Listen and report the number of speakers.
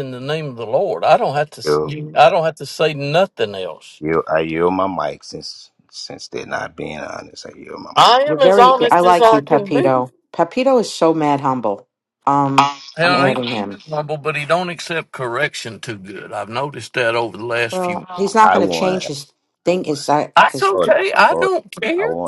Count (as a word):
three